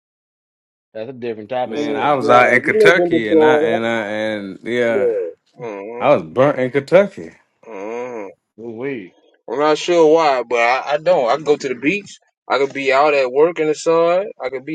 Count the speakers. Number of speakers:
3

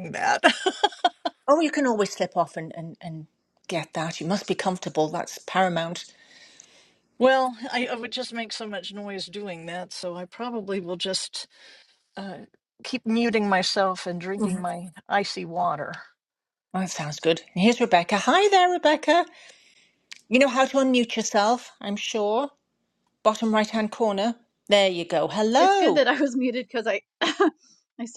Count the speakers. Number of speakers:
3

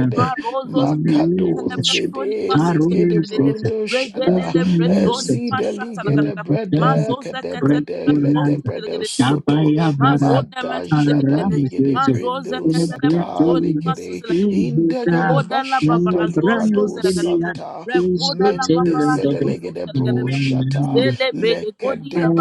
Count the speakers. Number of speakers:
3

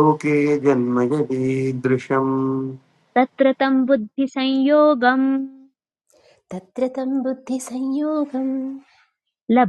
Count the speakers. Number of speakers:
3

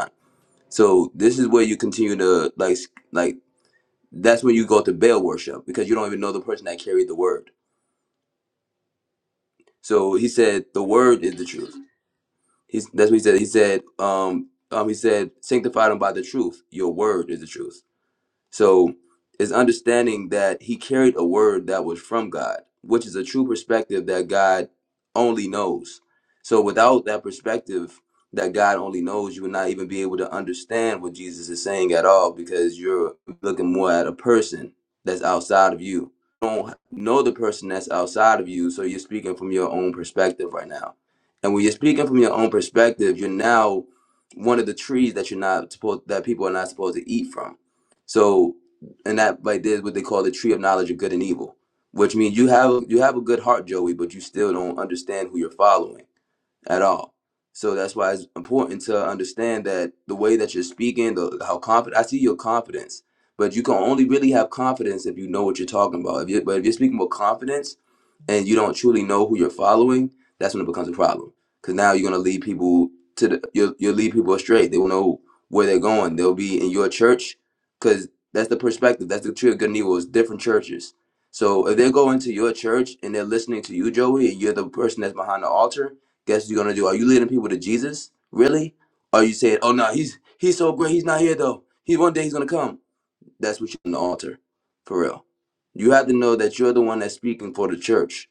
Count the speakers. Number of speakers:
1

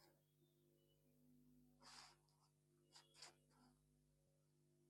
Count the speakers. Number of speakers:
0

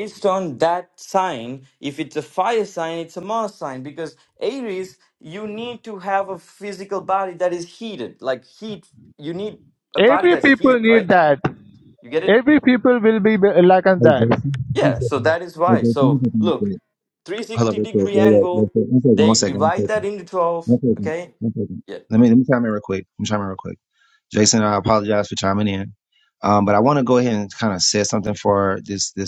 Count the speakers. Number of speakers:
3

